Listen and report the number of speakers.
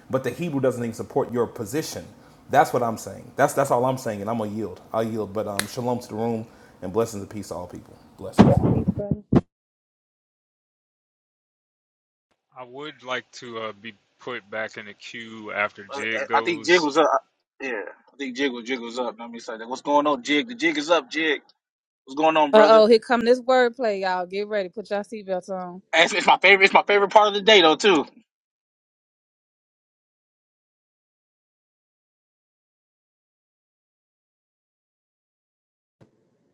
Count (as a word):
four